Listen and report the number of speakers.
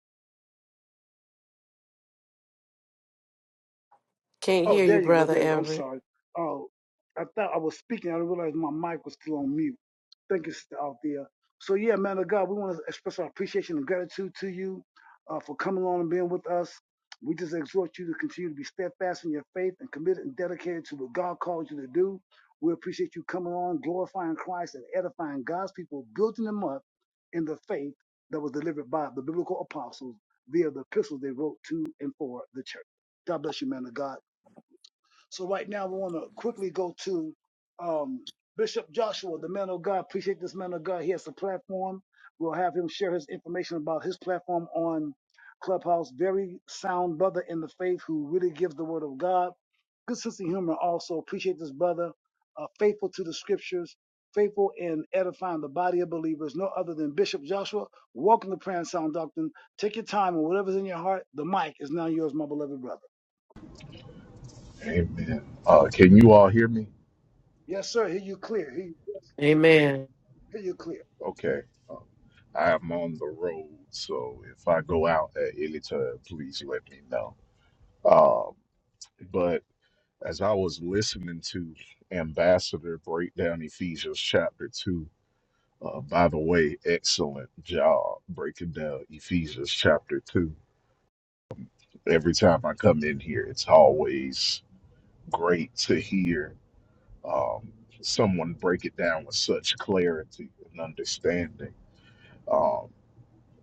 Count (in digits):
3